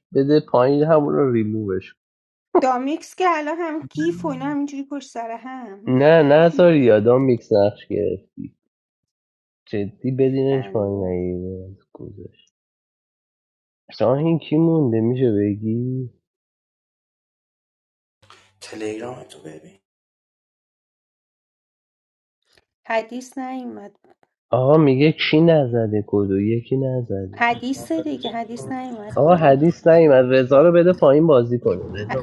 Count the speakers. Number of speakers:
three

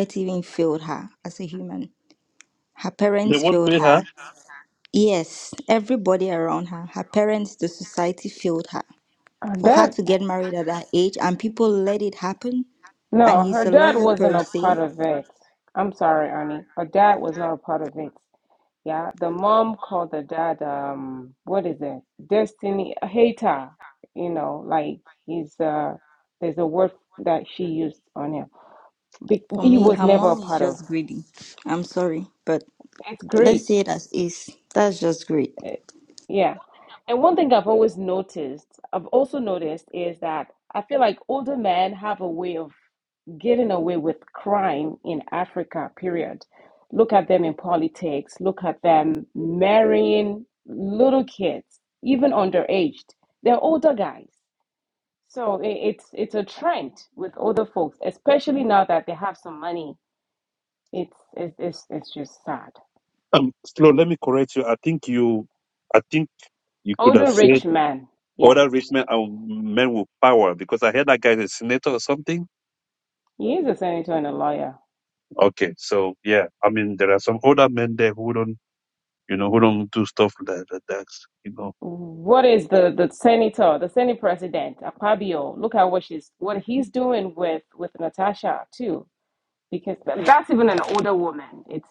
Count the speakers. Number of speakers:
three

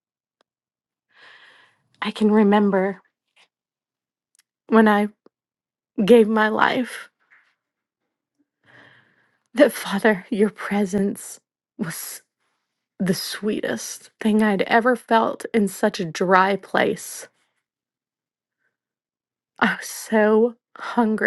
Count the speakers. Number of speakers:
one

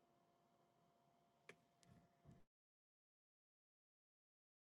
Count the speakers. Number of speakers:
zero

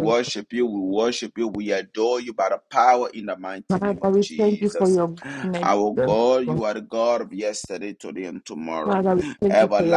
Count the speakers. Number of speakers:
two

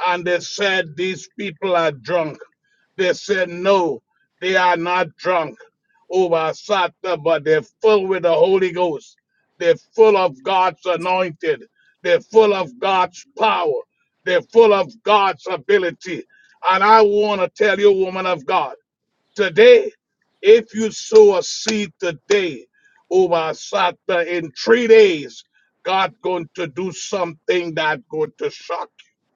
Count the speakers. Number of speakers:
one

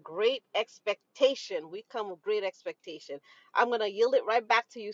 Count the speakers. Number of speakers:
one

